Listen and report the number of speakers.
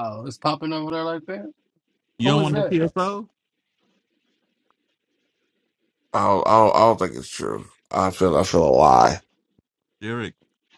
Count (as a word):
three